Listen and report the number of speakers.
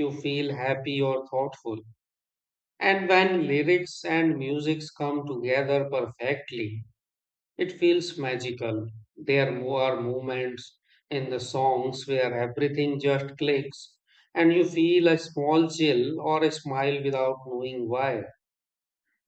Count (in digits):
1